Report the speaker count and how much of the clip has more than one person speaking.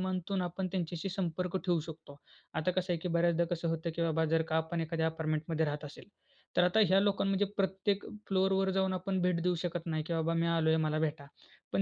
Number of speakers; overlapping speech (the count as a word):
one, no overlap